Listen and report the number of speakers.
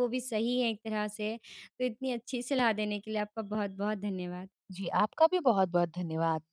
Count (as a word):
two